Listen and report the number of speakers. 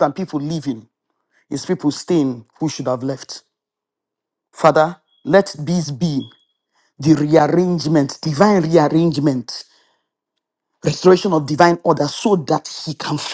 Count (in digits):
1